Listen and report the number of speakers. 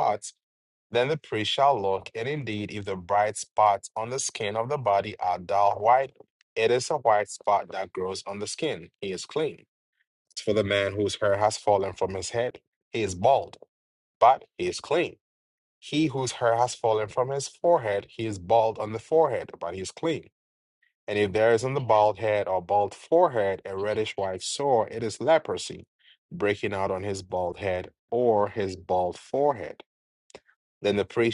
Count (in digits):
1